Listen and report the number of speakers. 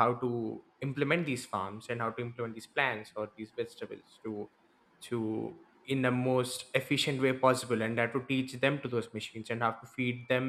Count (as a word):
one